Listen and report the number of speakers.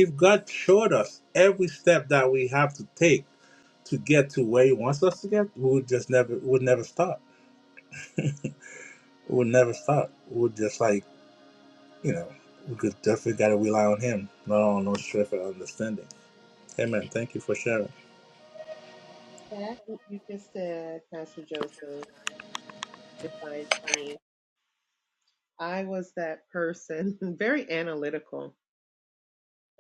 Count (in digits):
2